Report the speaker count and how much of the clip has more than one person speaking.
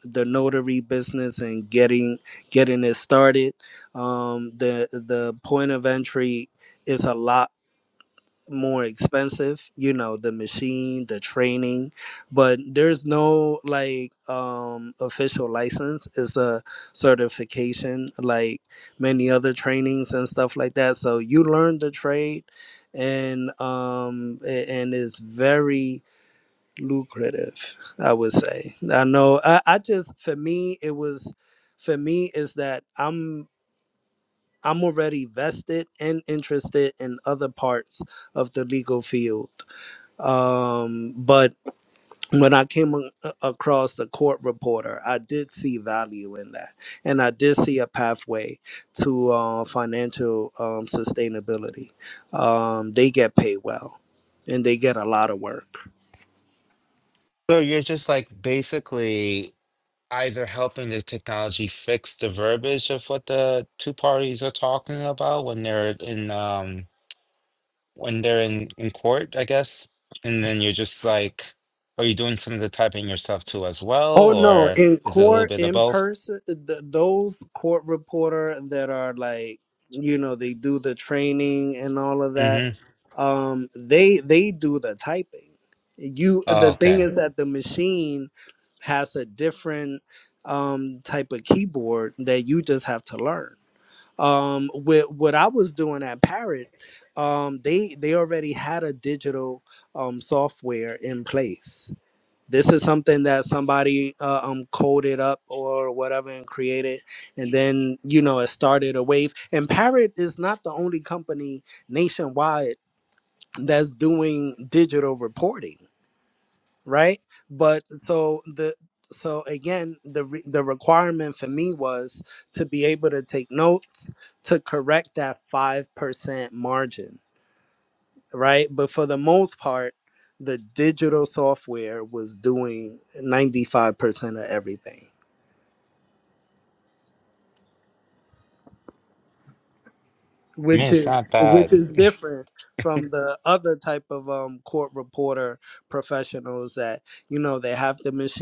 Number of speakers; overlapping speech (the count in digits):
2, about 3%